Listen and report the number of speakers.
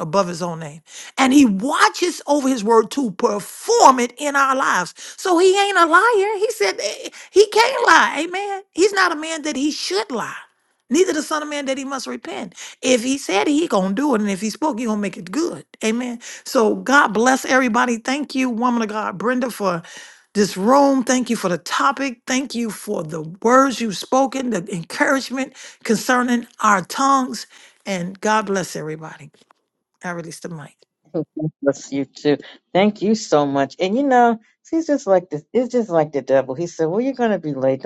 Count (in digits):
2